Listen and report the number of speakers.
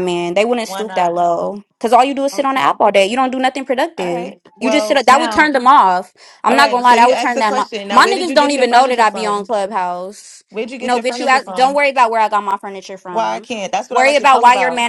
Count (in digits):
2